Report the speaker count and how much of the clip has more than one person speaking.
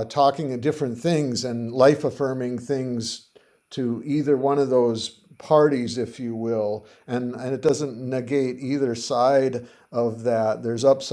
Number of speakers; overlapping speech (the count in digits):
1, no overlap